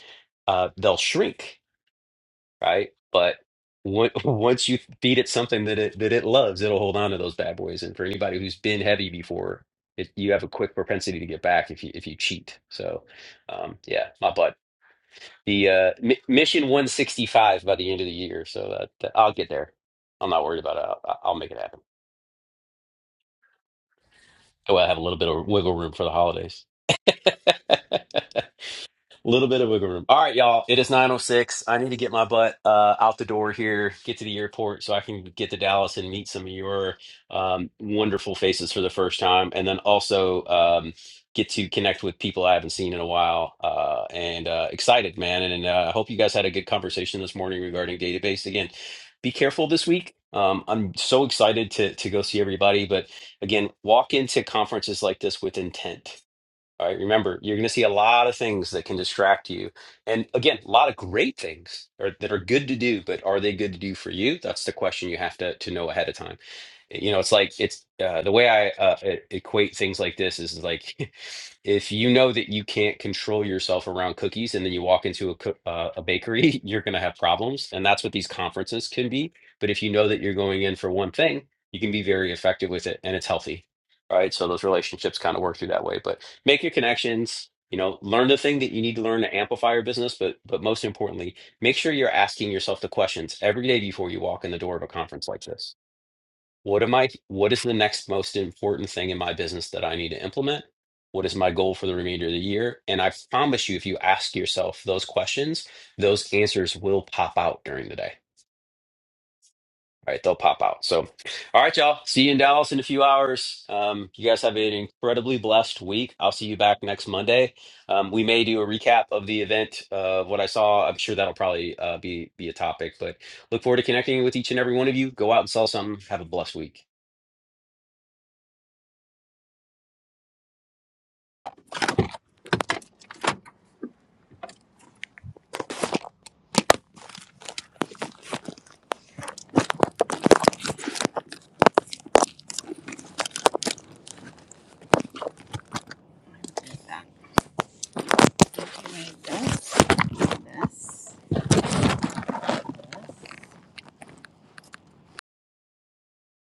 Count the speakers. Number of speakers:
2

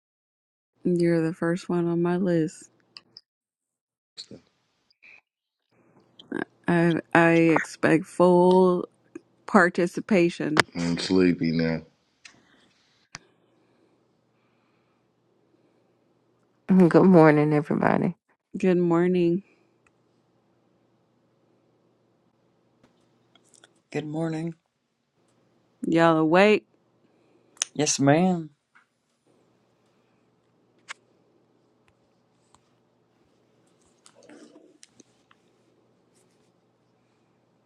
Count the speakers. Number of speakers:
4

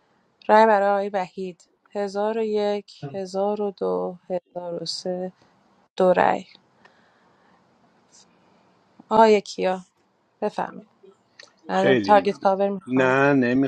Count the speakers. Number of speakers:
2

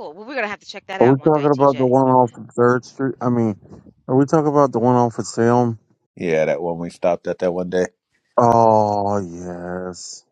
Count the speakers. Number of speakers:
3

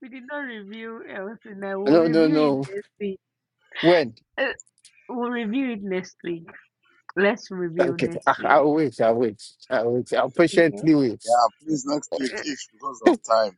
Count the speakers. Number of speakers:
3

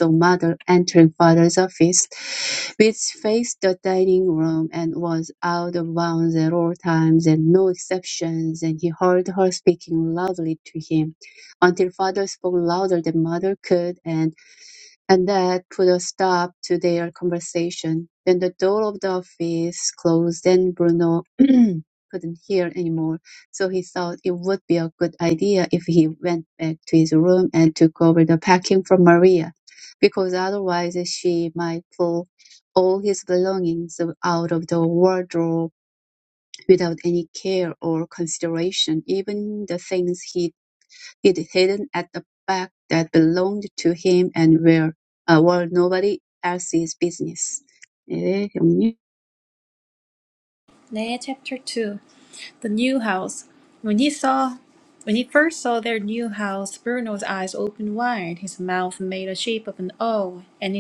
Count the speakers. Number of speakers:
2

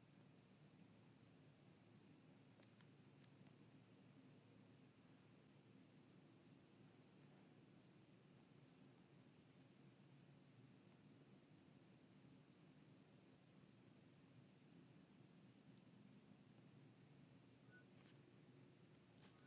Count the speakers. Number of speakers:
0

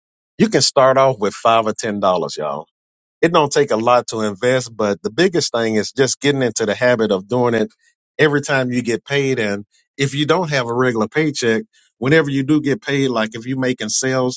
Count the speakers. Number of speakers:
1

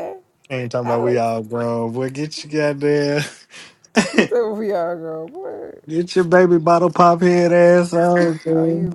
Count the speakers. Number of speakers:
2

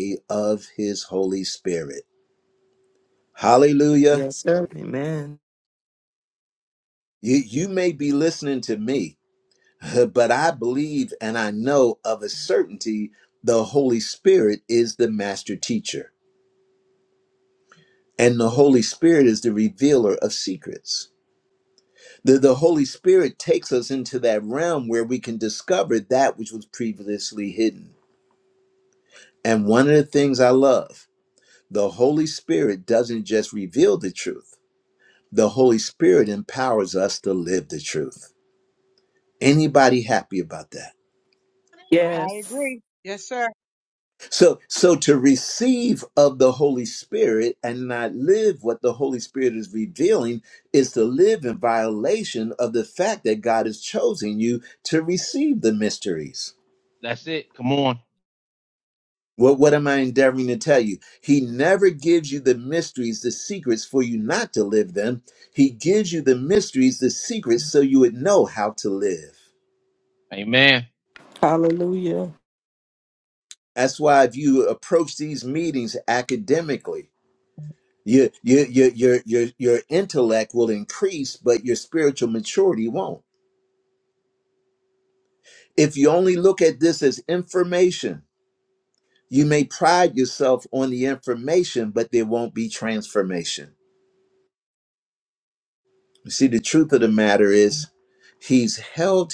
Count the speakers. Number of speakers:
5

